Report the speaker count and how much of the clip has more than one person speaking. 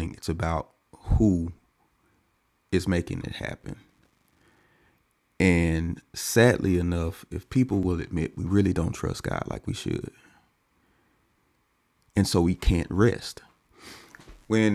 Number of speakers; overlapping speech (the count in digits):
1, no overlap